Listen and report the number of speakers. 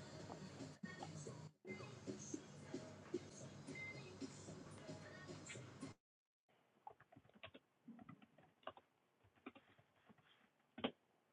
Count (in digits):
0